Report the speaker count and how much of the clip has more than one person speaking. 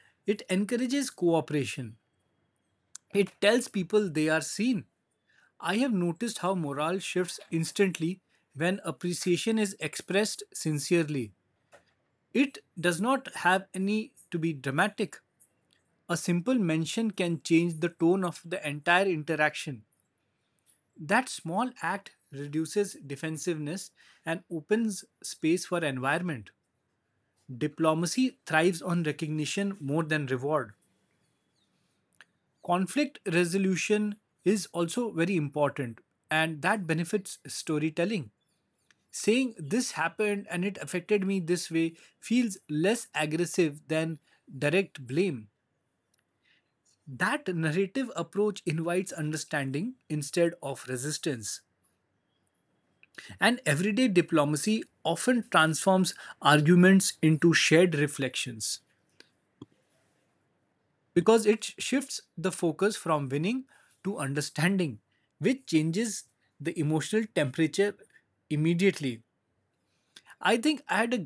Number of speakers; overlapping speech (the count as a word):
one, no overlap